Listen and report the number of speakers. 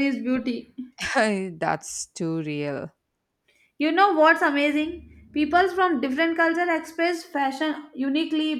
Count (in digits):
2